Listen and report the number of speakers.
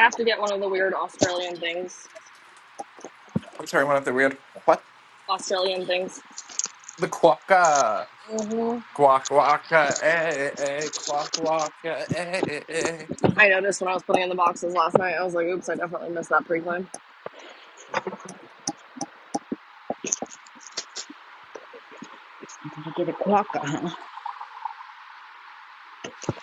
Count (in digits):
3